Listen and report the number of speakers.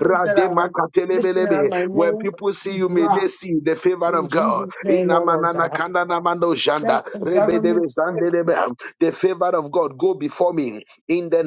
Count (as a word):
two